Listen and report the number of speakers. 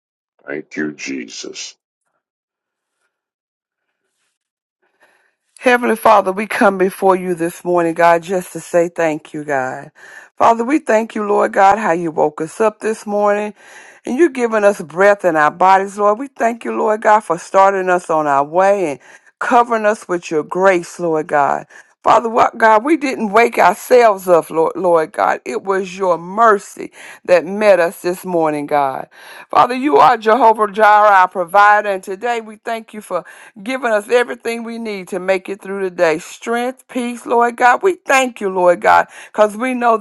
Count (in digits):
2